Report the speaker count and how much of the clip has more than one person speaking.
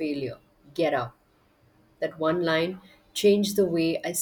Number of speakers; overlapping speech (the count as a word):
one, no overlap